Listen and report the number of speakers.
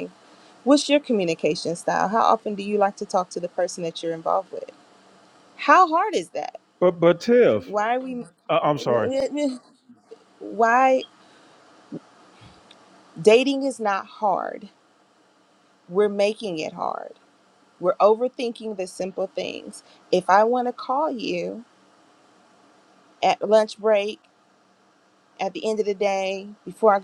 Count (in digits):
2